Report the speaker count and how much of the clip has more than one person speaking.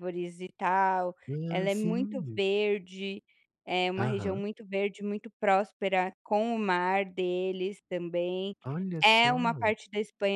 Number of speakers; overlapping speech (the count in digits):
2, about 18%